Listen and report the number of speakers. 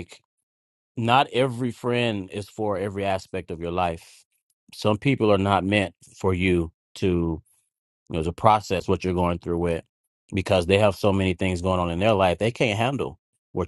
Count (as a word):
one